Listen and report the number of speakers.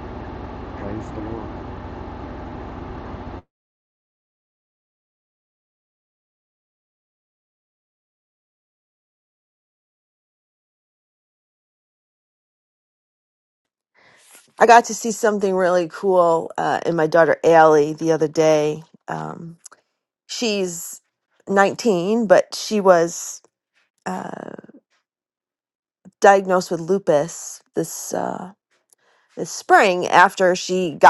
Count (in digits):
2